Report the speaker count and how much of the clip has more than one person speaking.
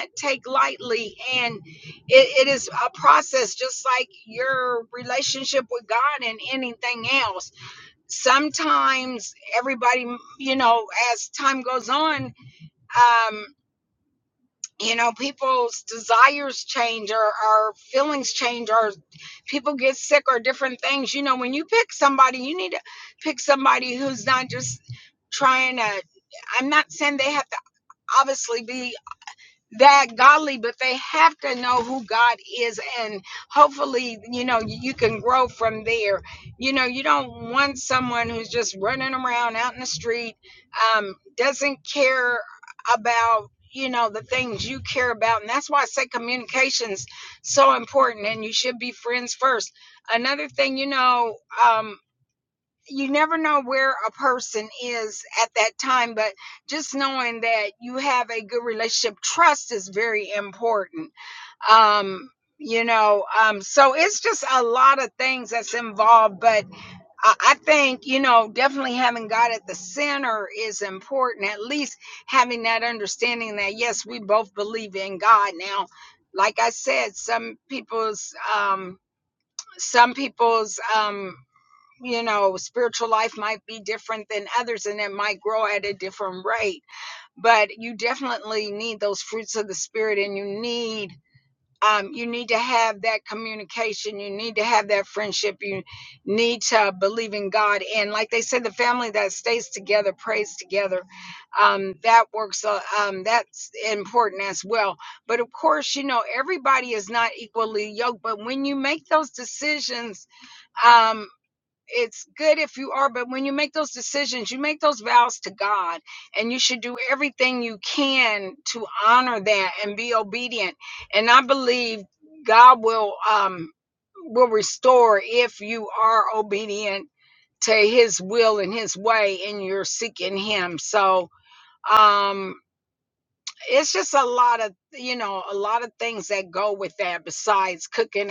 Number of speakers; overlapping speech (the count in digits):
1, no overlap